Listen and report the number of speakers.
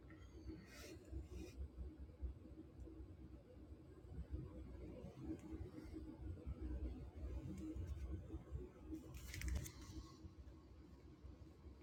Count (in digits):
0